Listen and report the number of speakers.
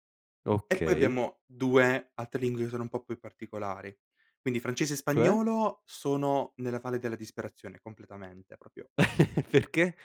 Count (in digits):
2